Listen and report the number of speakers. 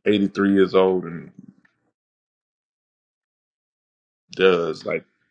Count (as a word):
one